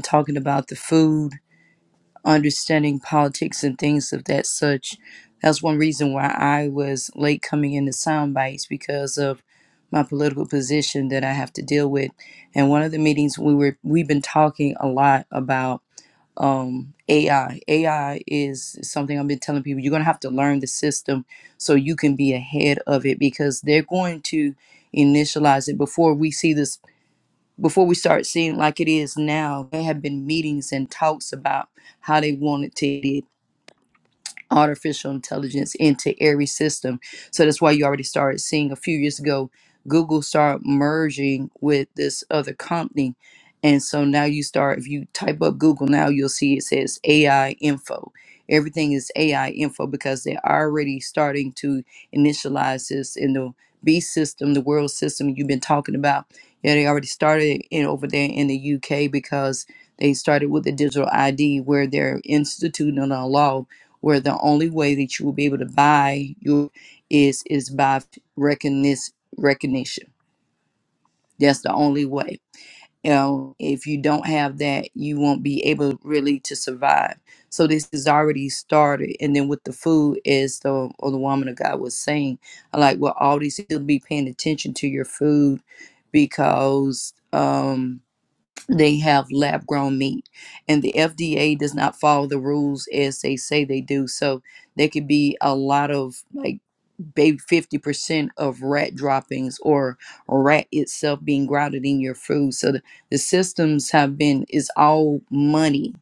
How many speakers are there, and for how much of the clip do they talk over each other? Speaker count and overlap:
one, no overlap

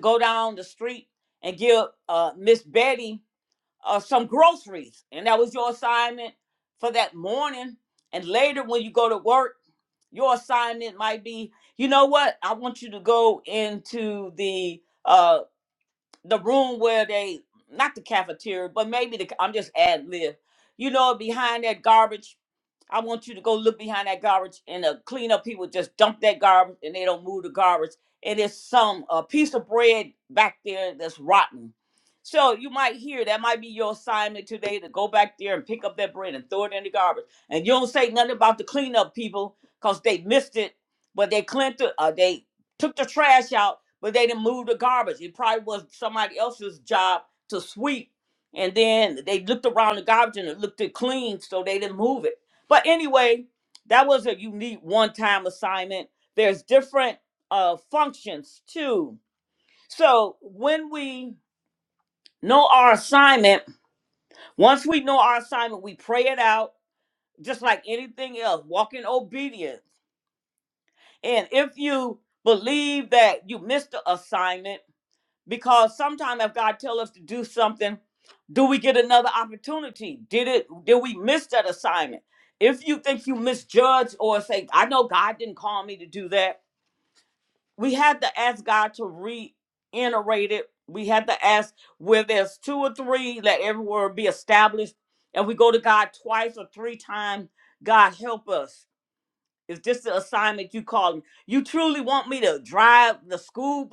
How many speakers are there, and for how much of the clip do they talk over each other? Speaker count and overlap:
one, no overlap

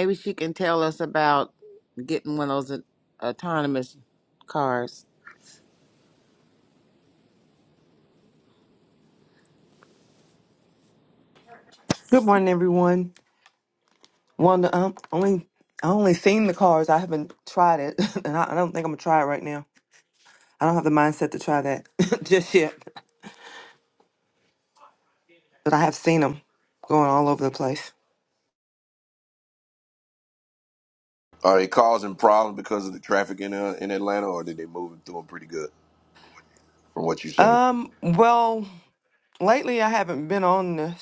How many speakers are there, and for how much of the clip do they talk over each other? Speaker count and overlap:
three, about 1%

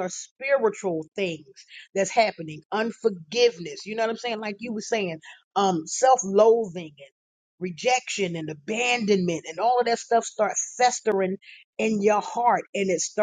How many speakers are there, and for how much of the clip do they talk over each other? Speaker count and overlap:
one, no overlap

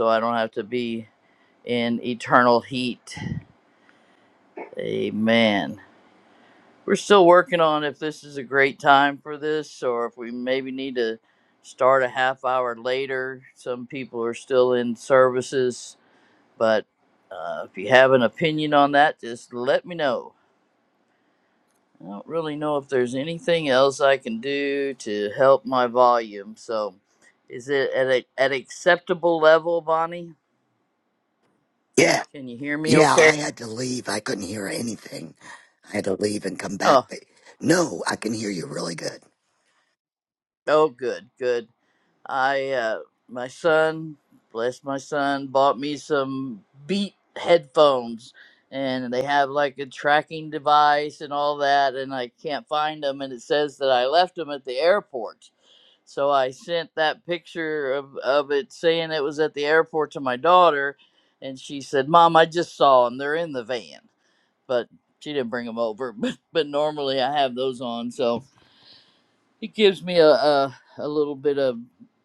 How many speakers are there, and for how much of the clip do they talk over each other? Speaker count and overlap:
two, about 1%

